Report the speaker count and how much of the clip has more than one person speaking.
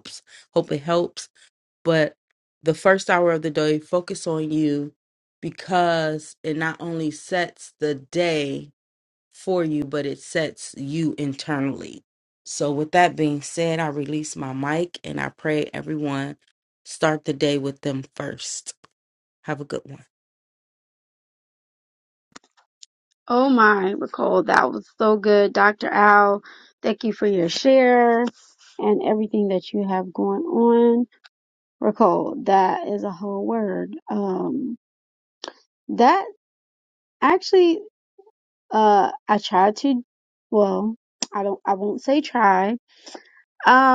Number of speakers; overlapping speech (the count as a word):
two, no overlap